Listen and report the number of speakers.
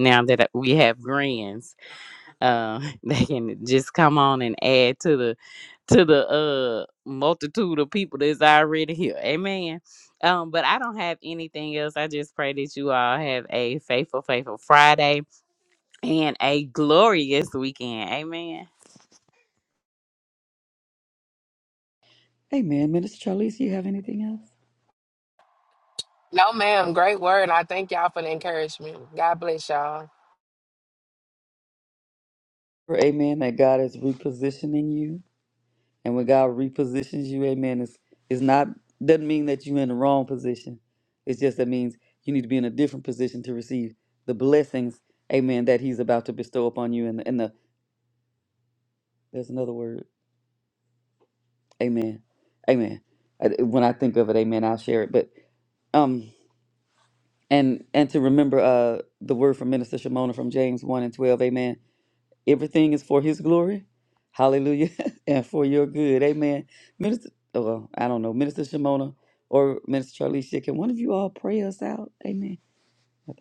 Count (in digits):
3